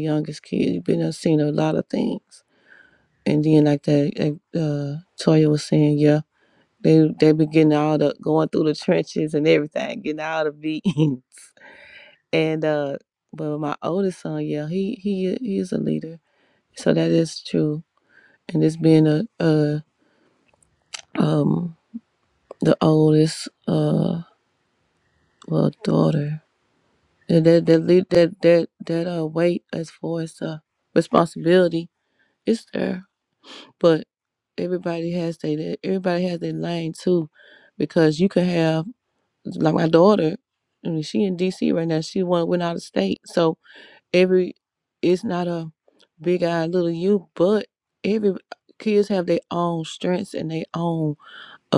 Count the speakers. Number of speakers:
one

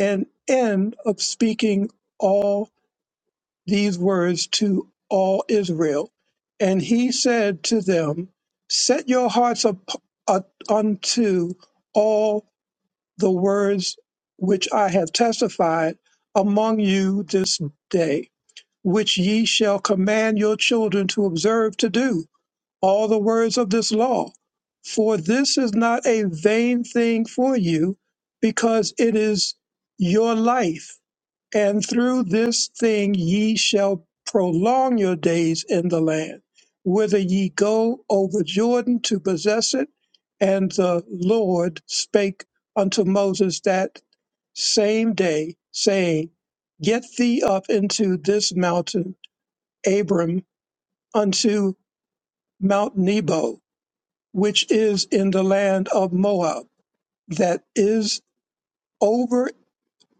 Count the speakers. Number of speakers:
one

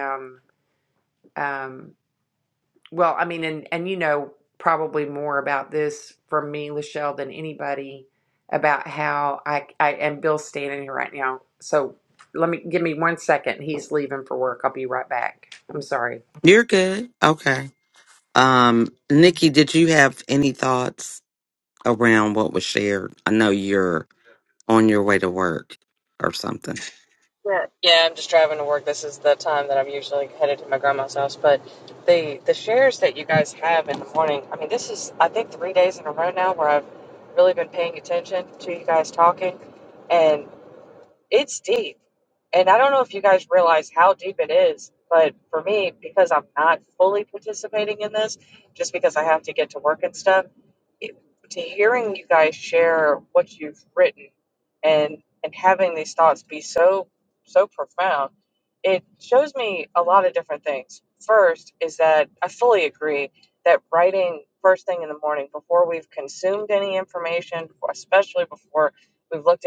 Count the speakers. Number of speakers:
three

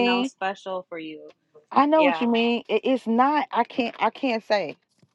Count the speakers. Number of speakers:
two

